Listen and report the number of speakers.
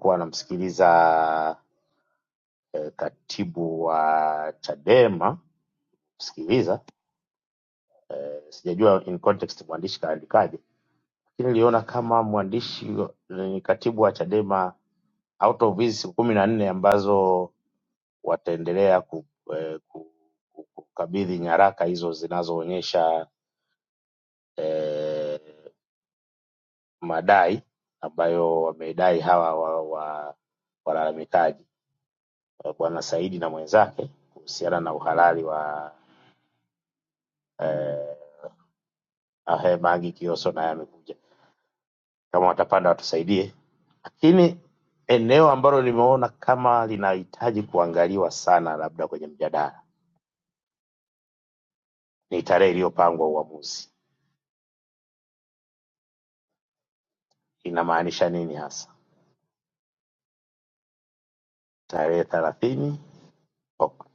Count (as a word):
one